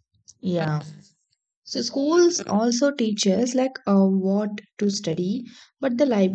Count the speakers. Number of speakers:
1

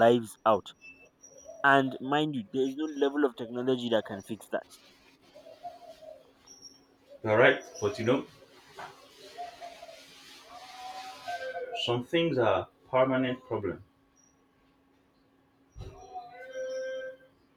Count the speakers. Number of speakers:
2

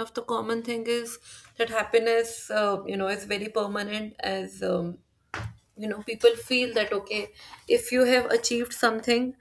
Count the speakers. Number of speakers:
1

